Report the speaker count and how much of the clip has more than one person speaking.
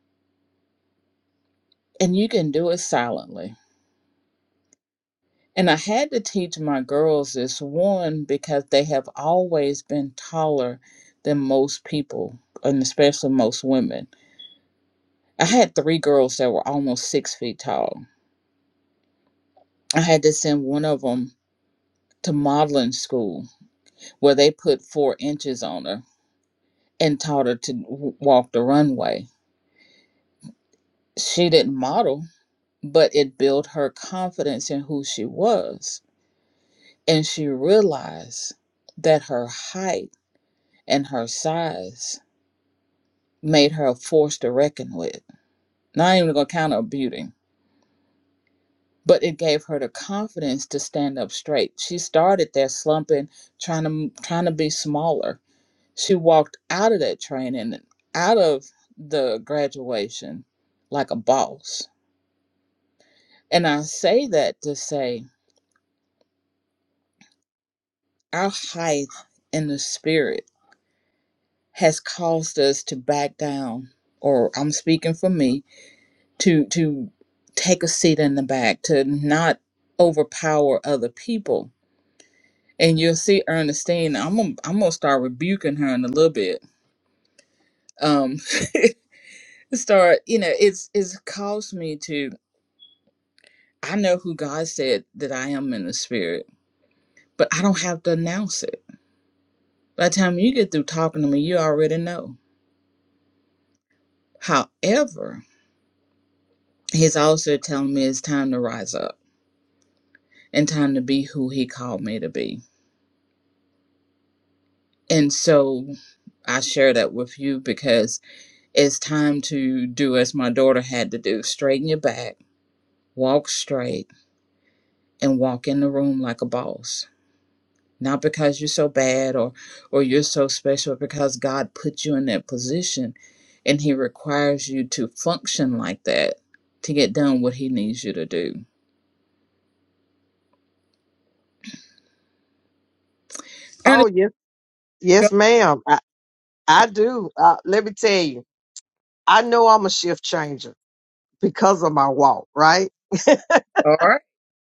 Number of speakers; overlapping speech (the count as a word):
two, under 1%